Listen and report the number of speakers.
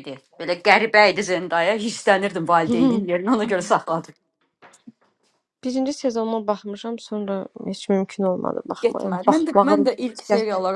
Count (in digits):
3